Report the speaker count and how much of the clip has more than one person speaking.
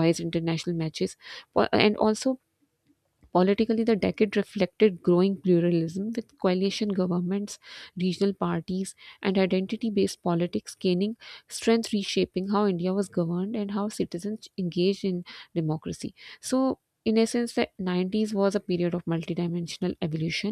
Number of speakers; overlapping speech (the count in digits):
1, no overlap